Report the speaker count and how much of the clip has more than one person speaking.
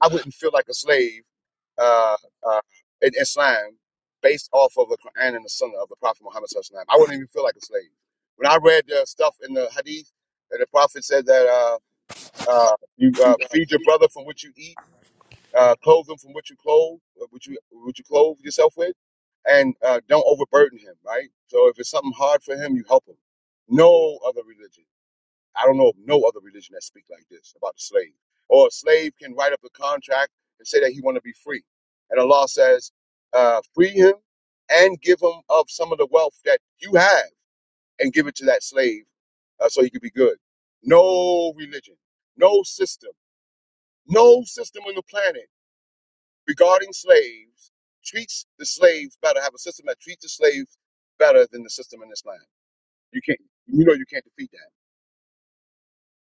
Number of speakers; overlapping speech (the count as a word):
one, no overlap